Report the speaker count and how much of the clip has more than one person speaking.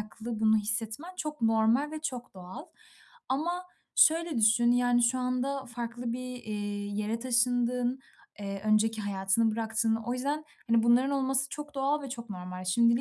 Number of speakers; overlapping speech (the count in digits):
1, no overlap